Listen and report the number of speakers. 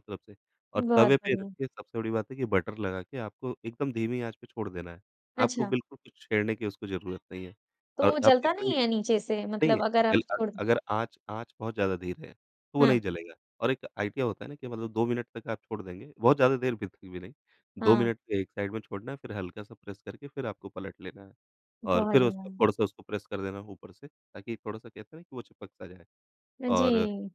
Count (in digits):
2